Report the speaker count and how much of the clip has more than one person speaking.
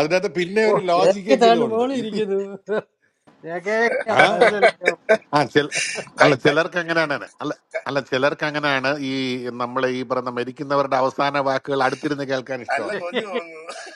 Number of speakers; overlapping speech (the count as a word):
three, about 15%